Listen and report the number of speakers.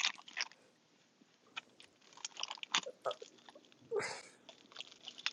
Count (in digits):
0